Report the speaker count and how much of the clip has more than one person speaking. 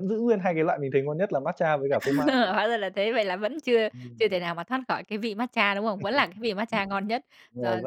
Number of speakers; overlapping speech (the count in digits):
2, about 5%